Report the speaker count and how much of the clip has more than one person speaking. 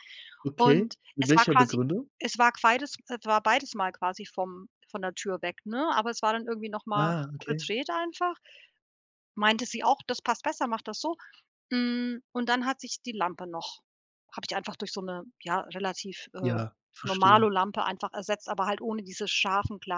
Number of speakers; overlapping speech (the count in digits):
2, about 8%